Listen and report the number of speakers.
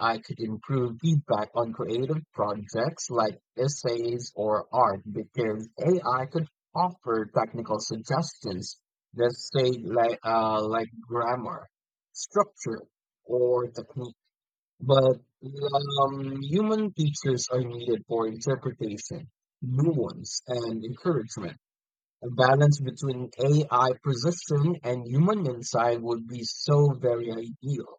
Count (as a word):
one